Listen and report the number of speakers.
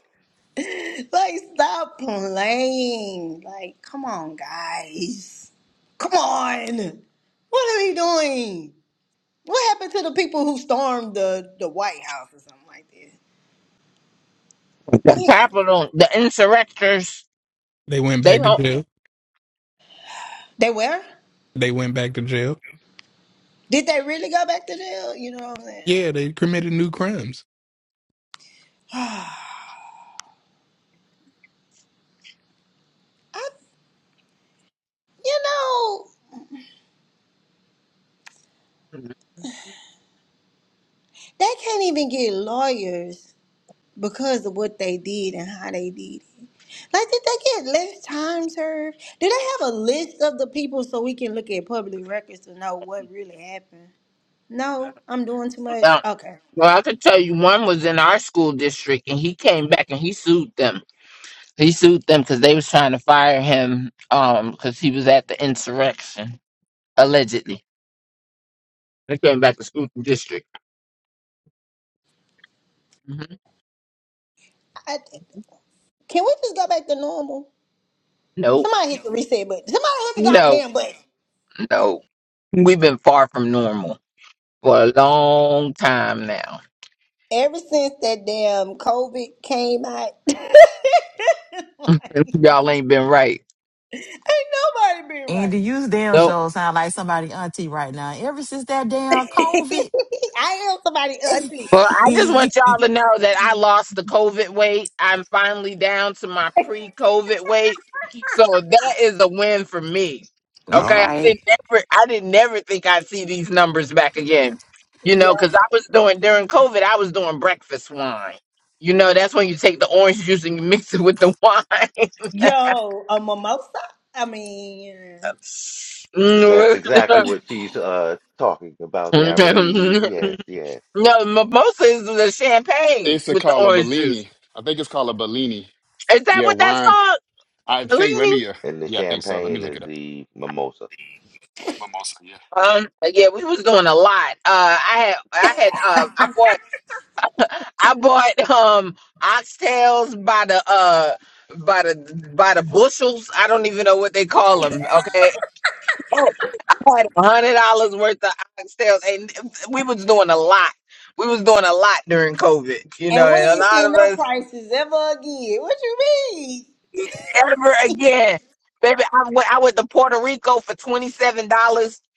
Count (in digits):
6